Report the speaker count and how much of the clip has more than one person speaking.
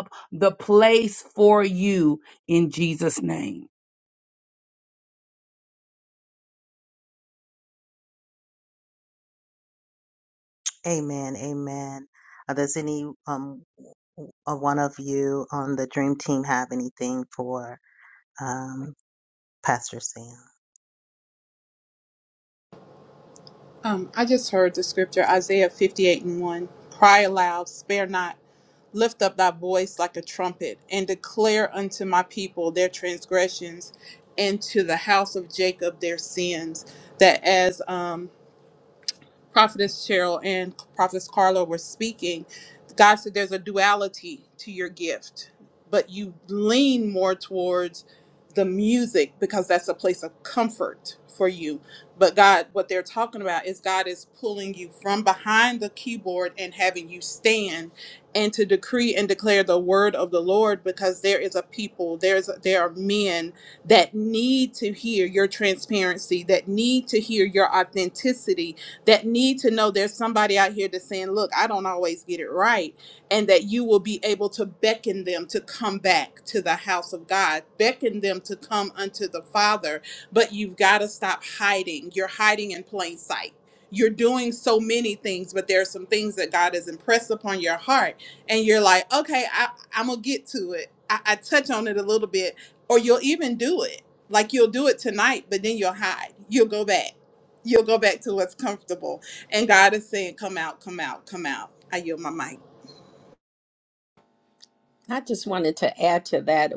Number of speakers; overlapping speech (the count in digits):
4, no overlap